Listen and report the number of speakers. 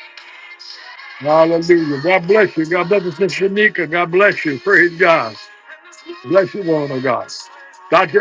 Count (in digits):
1